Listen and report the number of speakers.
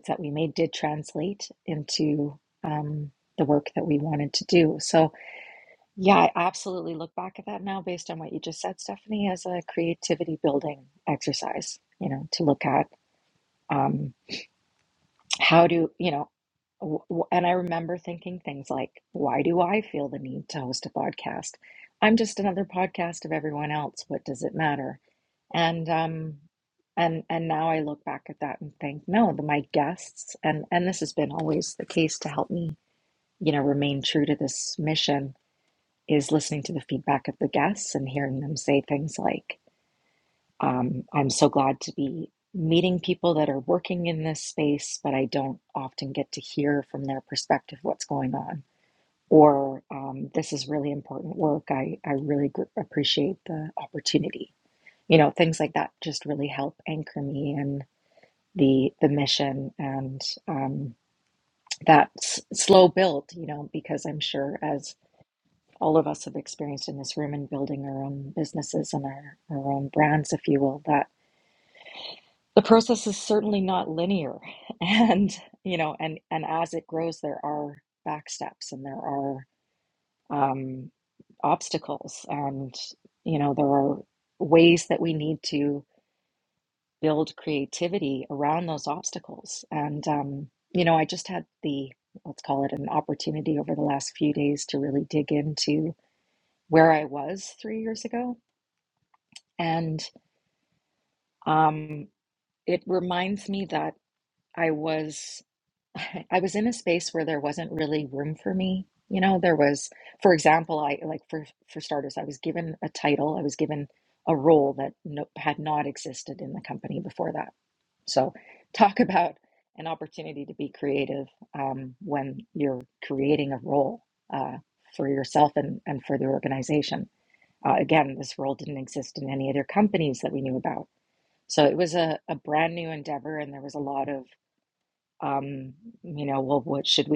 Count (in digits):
1